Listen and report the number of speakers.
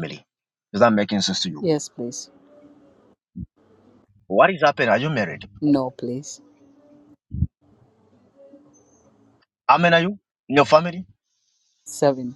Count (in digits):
2